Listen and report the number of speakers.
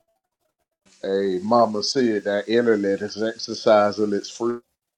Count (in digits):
1